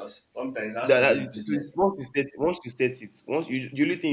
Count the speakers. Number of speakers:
2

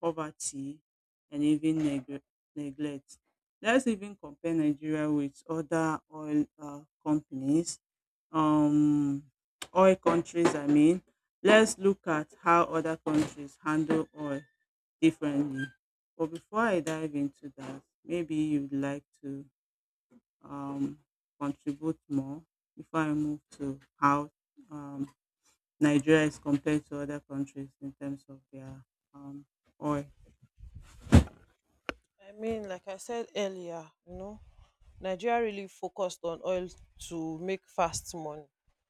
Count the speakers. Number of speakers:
2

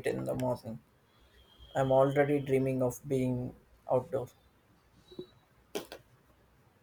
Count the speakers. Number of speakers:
1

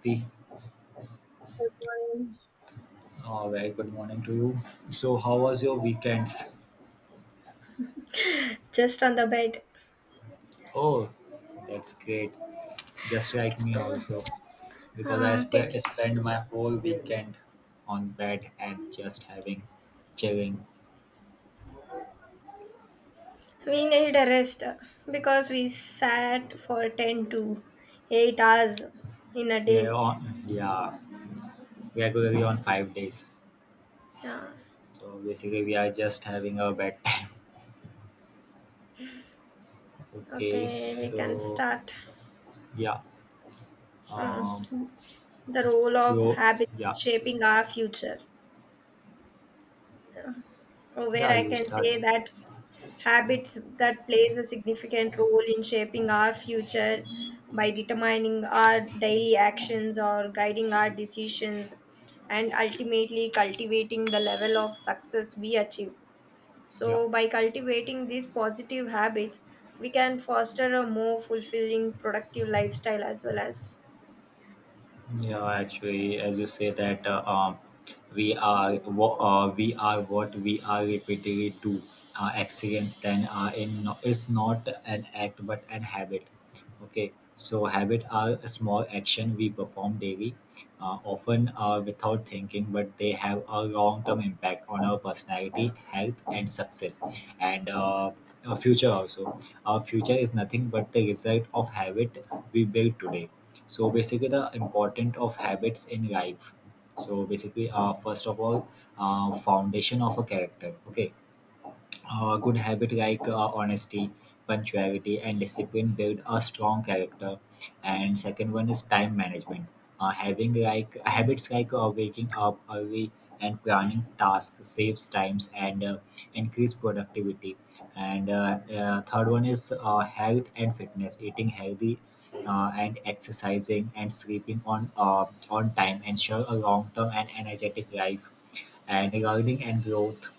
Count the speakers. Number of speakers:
2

